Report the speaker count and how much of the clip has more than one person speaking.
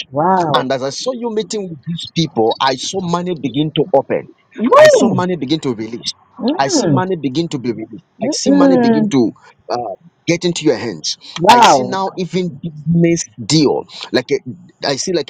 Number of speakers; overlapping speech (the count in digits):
2, about 15%